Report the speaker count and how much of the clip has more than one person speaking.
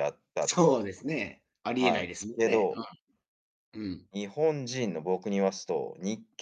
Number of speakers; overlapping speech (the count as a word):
two, about 17%